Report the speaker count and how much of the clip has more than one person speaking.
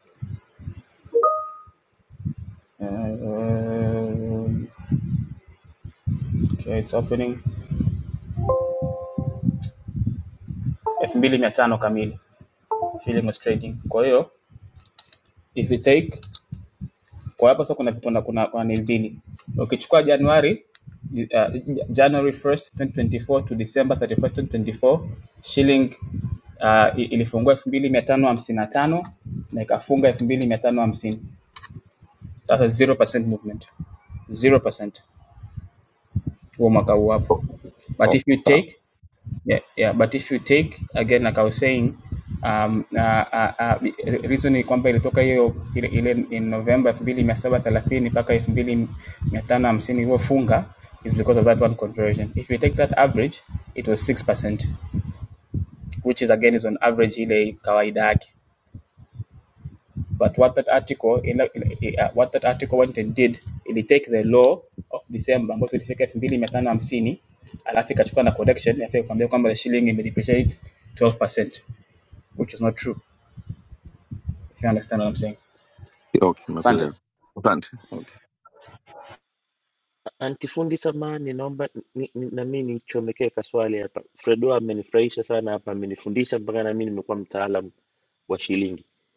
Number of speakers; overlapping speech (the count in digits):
3, about 1%